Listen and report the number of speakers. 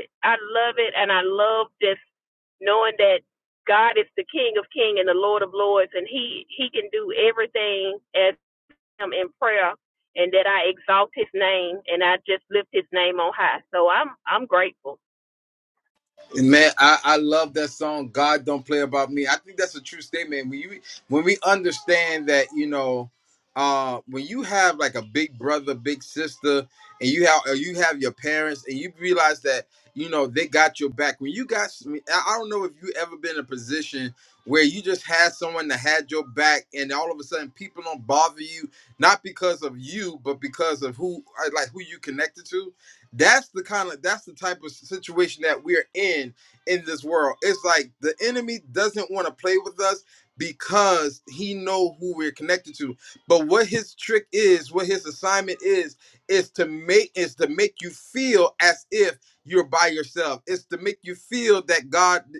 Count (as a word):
two